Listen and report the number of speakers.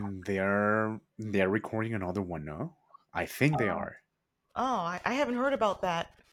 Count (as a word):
two